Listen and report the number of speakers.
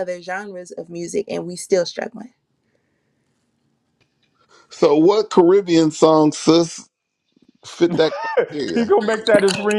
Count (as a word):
three